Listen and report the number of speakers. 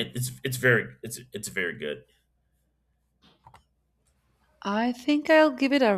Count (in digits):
2